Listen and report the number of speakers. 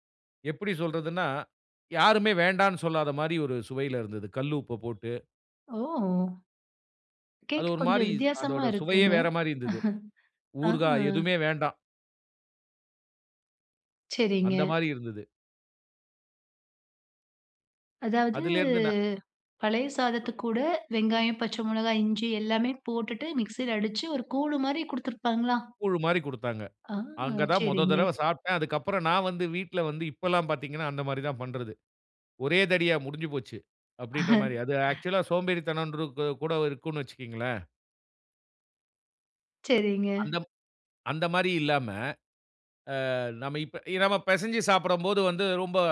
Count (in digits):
2